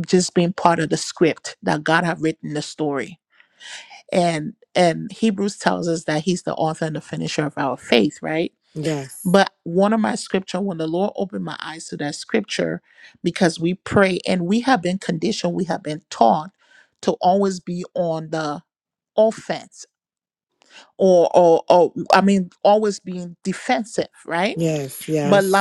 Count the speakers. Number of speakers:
2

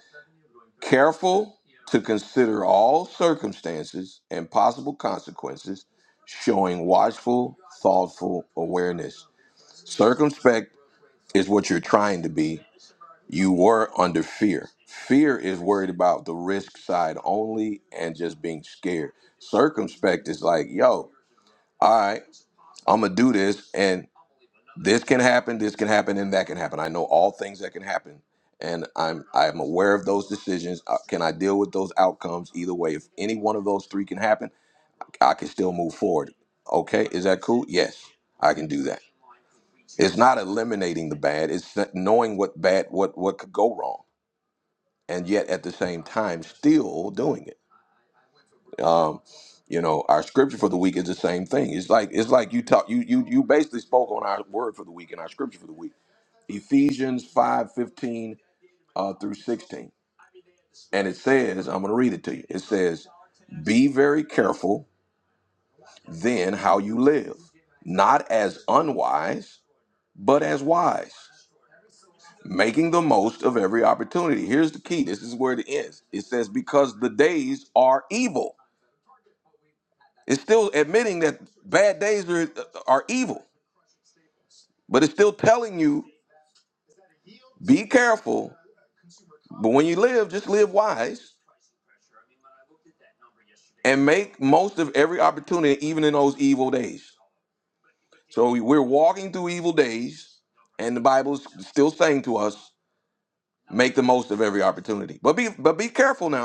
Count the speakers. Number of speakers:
1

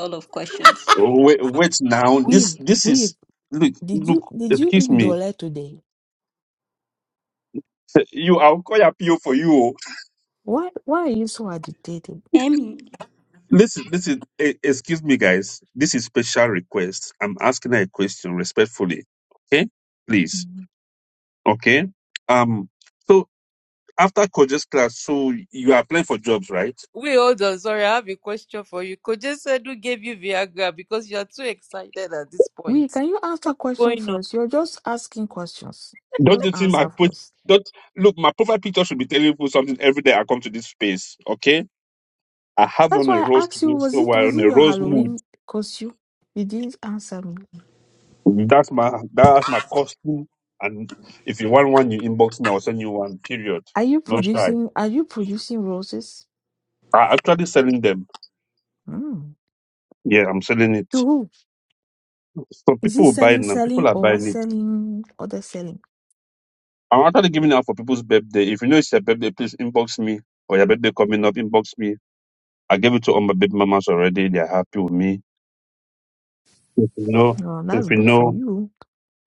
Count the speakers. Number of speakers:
4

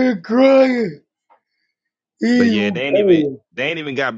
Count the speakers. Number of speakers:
2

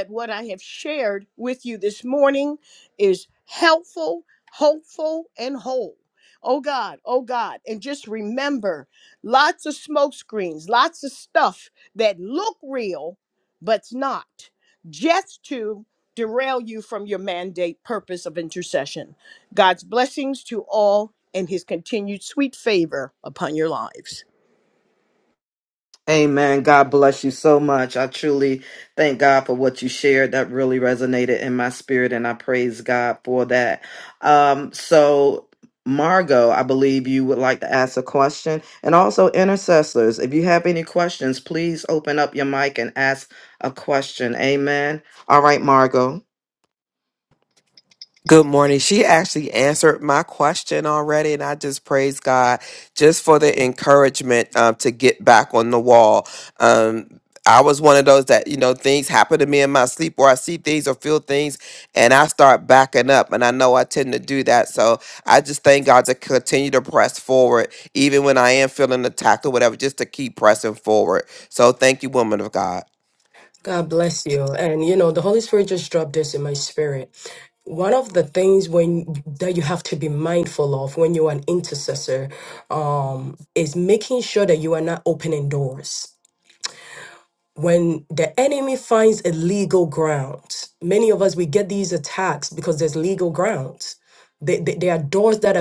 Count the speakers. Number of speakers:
4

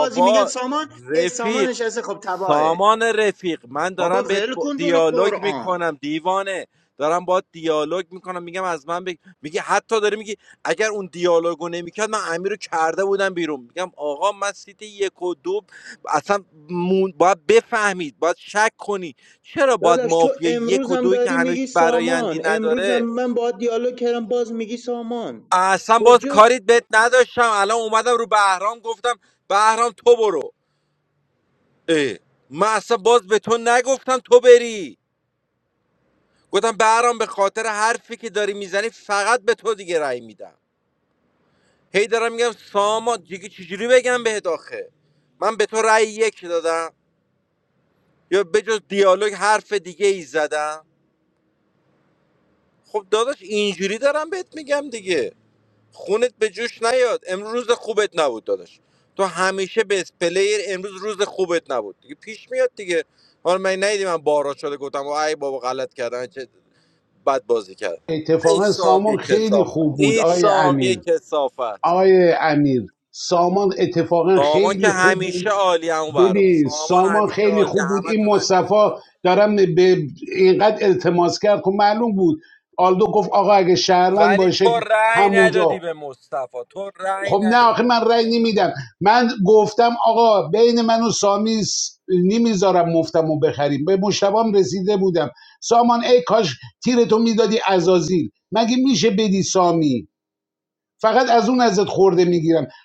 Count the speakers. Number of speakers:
3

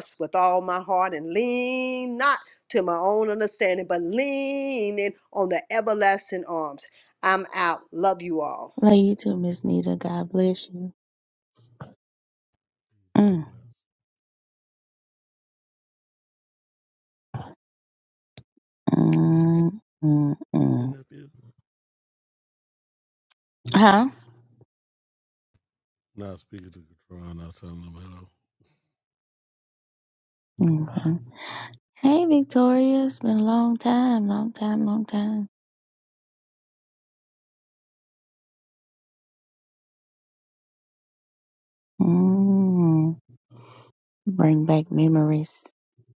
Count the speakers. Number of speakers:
3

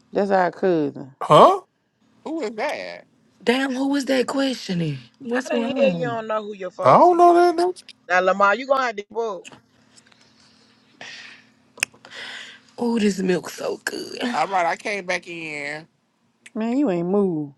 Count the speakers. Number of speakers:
5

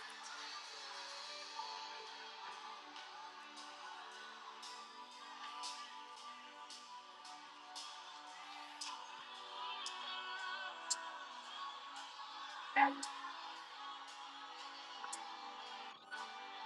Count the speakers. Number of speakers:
0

